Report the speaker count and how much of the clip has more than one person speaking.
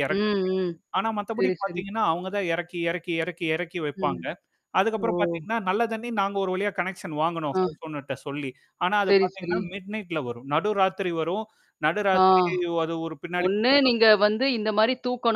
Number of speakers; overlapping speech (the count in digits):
2, about 17%